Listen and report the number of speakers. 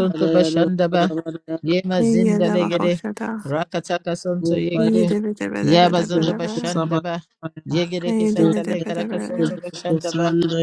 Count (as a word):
three